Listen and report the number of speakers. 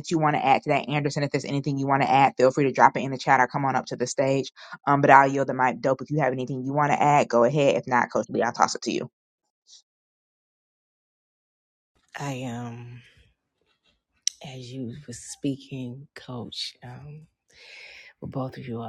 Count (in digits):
2